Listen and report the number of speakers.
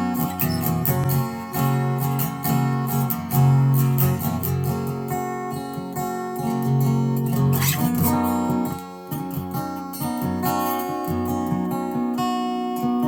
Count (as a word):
zero